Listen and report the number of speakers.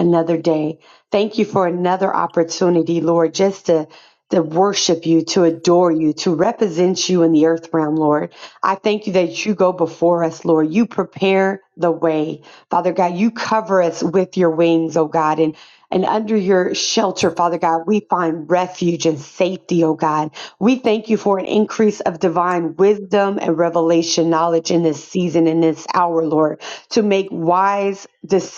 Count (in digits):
1